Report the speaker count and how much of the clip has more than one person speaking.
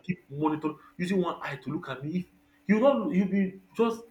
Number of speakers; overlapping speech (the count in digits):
1, no overlap